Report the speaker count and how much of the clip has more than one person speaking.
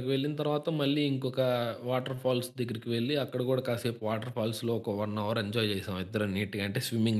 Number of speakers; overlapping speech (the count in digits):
1, no overlap